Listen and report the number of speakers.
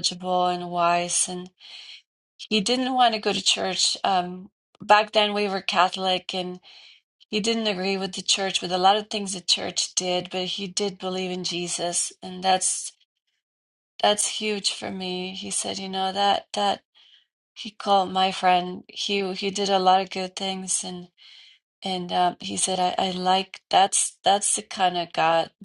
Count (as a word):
one